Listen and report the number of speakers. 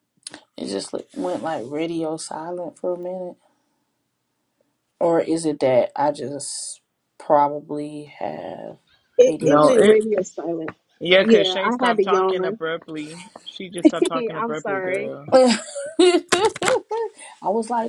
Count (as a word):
three